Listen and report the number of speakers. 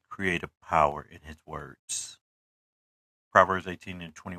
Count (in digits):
1